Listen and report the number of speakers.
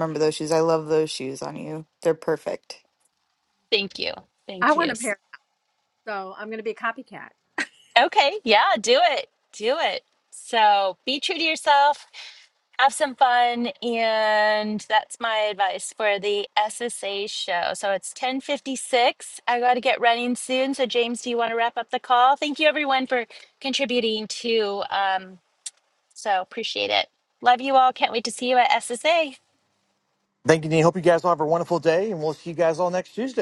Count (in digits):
4